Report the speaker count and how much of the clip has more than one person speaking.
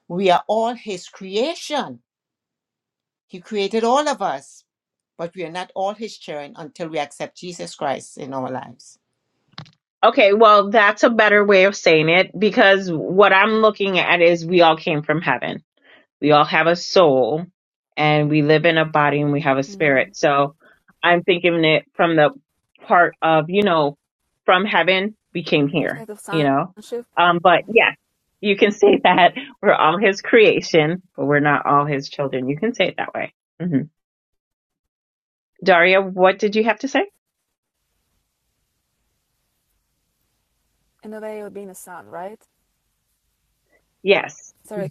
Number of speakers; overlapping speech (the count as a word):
three, about 2%